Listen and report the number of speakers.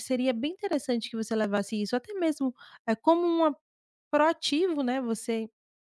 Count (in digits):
1